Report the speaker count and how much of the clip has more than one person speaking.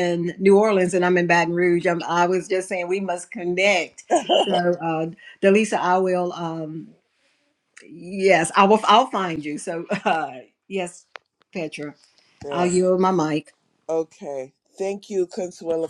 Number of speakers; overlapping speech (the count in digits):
2, about 1%